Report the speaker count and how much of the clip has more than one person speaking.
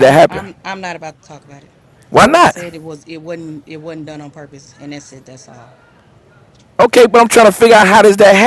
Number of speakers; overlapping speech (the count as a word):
two, about 11%